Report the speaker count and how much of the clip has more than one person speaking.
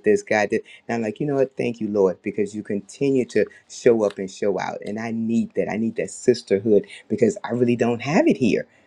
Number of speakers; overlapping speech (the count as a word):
one, no overlap